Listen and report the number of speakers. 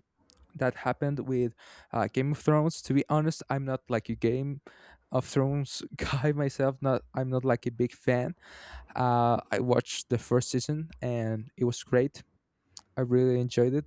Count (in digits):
1